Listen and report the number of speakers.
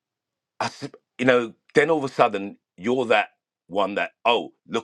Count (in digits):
1